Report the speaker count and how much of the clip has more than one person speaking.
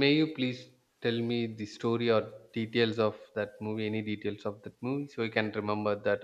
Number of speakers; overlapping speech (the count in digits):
1, no overlap